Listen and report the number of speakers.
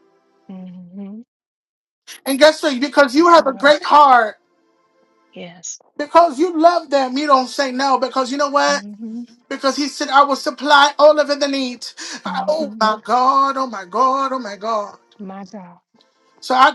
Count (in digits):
2